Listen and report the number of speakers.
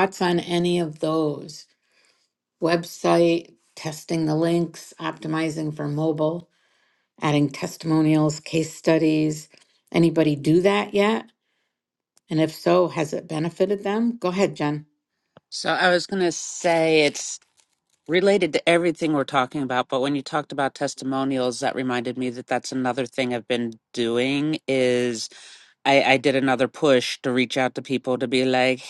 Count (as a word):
two